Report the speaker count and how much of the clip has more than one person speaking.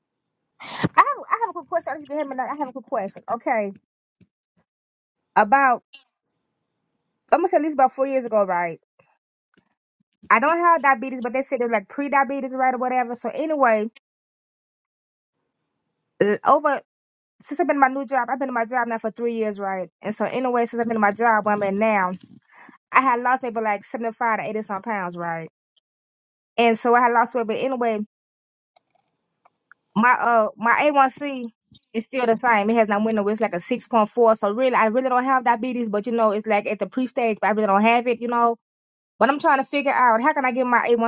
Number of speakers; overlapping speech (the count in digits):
1, no overlap